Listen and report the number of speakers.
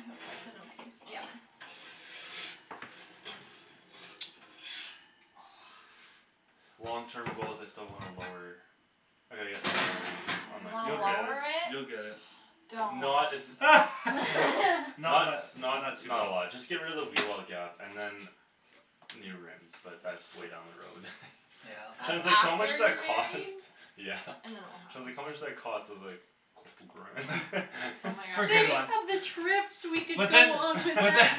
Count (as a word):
four